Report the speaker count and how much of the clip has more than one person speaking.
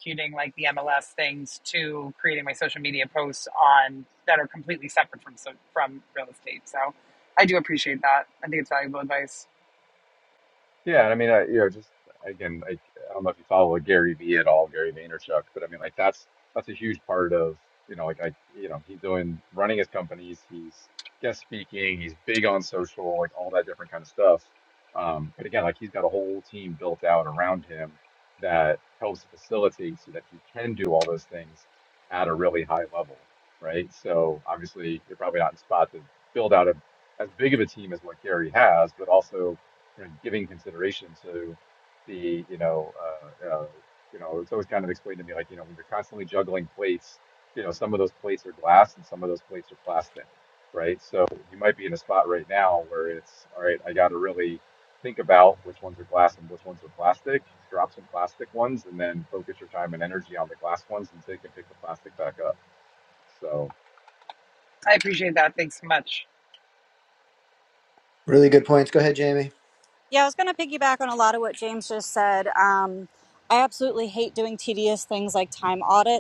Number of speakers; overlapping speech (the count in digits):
4, no overlap